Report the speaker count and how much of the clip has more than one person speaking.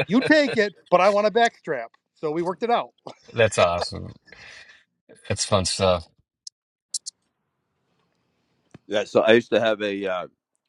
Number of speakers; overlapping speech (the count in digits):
3, no overlap